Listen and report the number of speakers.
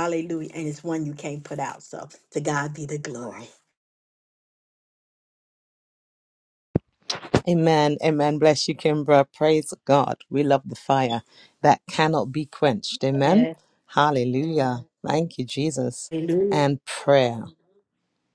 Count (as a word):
two